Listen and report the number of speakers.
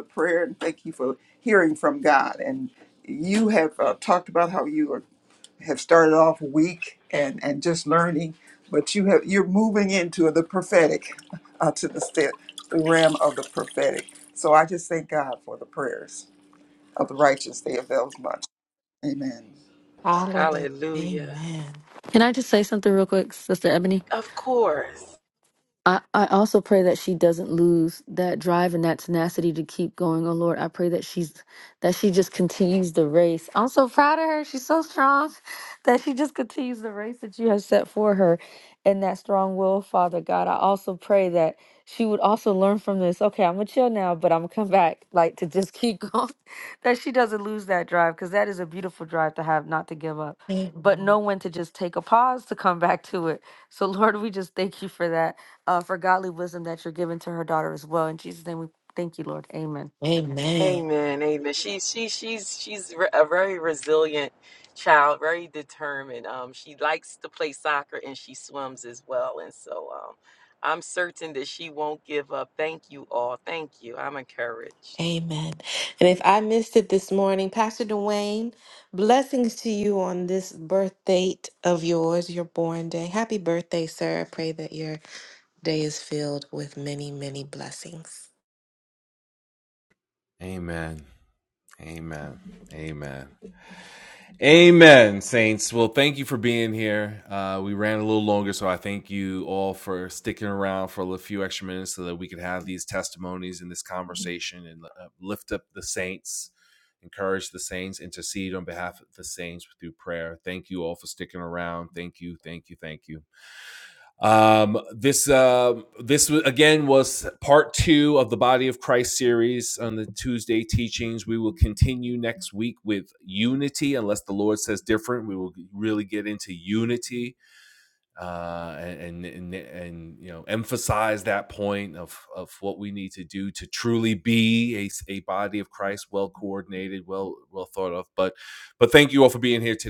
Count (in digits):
5